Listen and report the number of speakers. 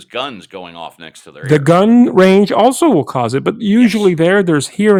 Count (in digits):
2